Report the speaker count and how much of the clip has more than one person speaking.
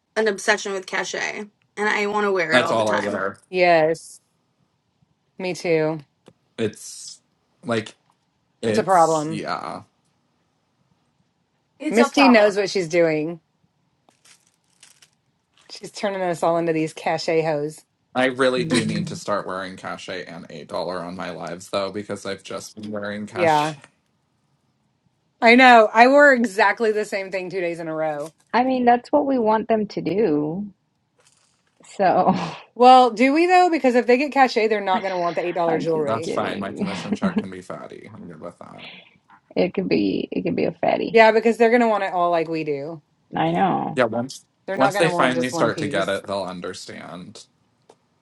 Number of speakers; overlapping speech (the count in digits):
4, about 10%